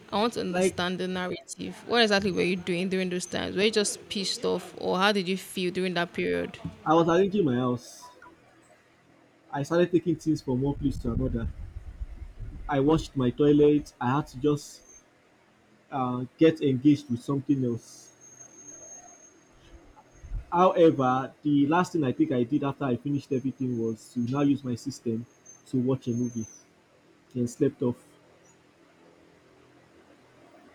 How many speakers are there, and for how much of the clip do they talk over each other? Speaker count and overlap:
2, about 1%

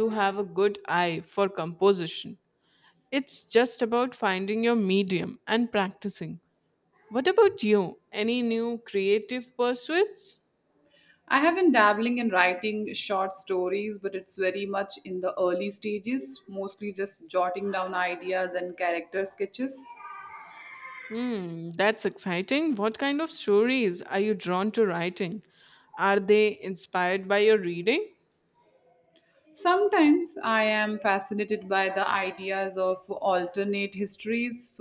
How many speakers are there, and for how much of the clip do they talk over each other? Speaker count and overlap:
2, no overlap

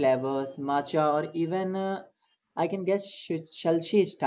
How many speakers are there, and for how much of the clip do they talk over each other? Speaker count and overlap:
1, no overlap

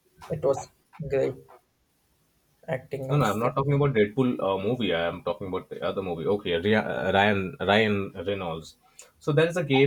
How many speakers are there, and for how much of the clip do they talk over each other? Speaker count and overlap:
2, about 4%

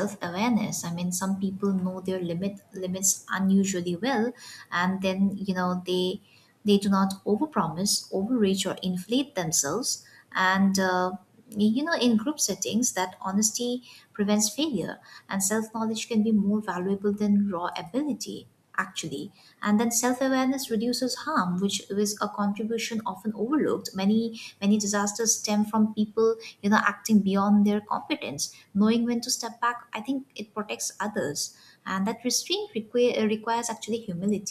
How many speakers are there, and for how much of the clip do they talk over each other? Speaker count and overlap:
1, no overlap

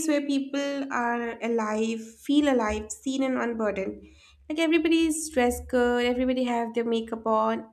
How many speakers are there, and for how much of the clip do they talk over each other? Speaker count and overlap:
1, no overlap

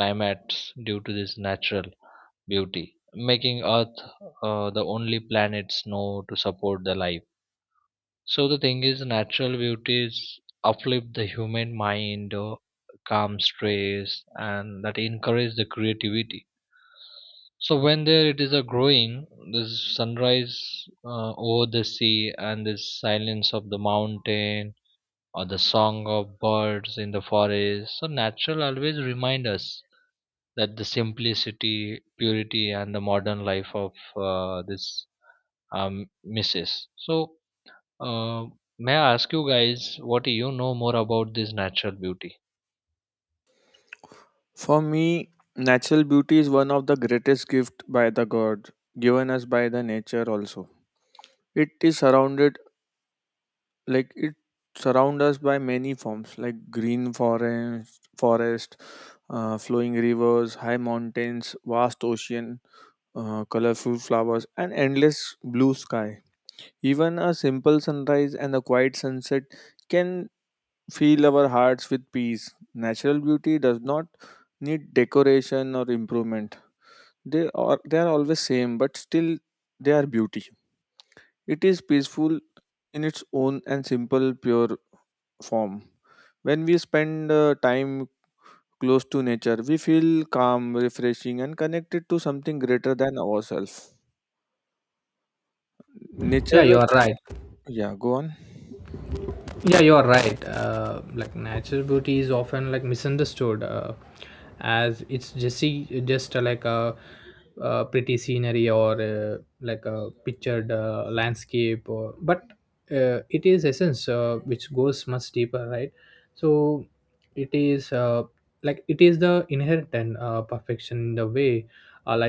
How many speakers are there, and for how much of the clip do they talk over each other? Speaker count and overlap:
3, under 1%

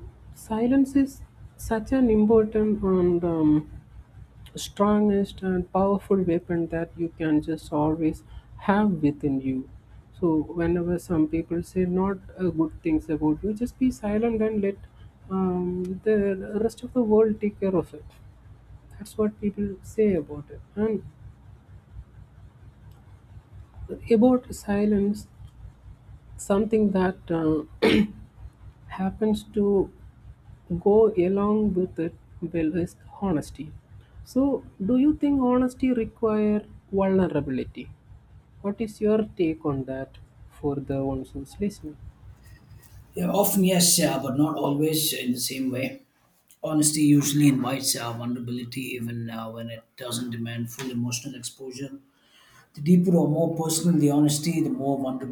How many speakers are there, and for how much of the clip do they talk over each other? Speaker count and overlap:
2, no overlap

